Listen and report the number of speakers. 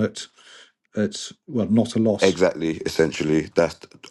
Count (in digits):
2